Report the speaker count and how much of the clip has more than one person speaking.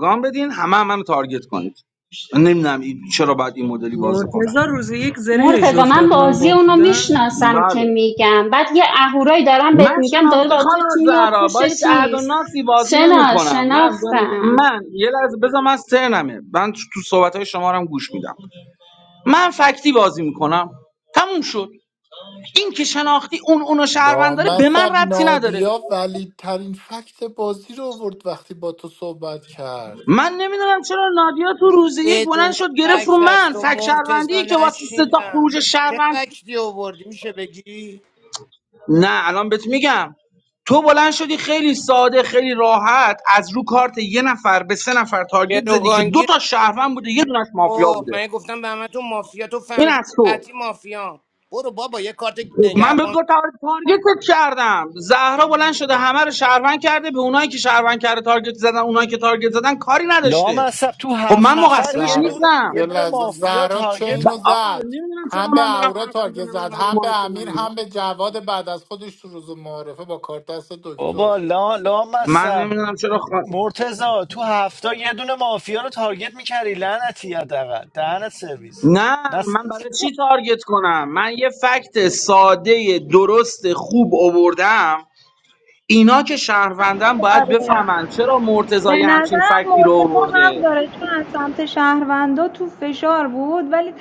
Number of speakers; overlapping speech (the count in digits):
7, about 26%